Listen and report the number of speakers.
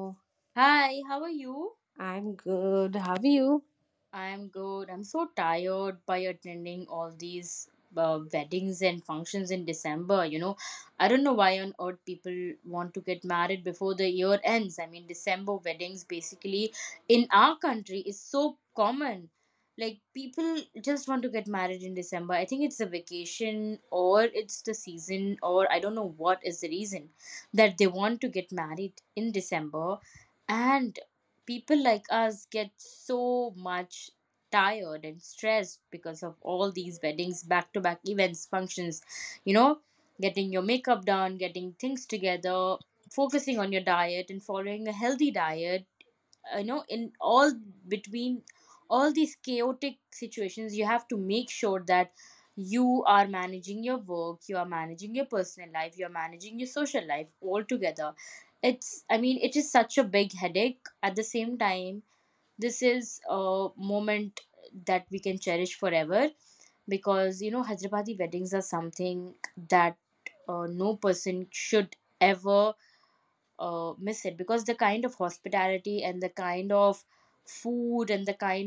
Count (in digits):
2